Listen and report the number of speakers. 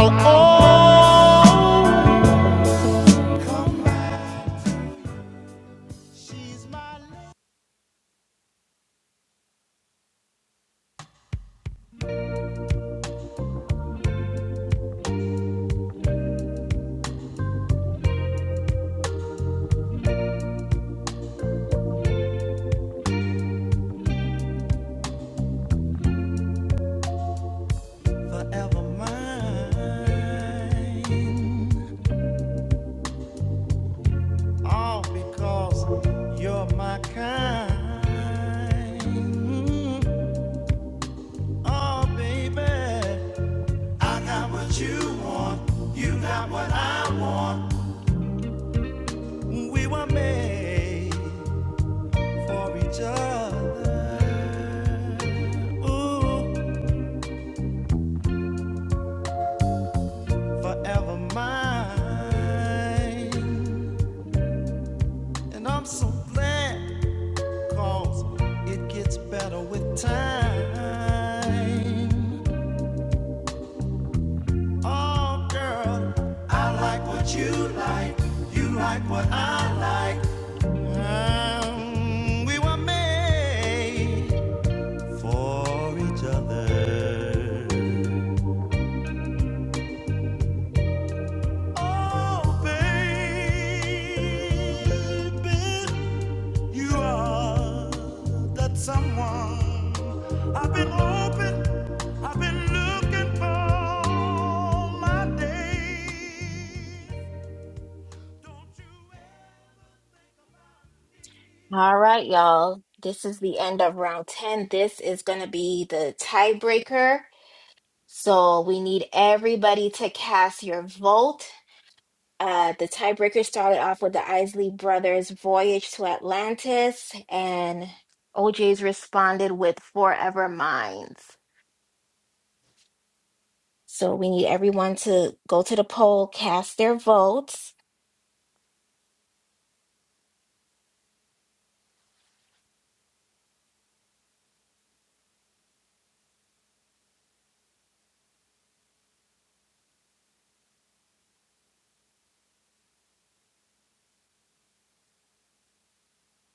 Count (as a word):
three